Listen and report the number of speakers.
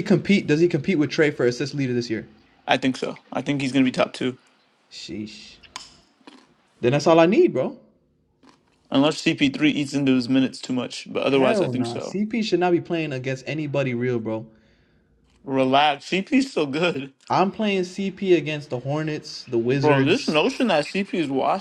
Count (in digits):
2